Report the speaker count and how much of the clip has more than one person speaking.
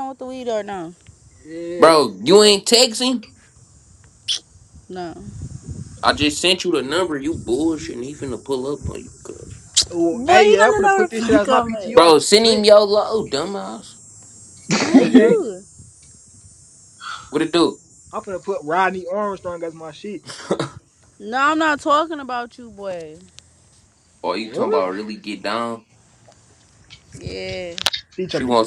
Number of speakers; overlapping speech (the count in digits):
3, about 13%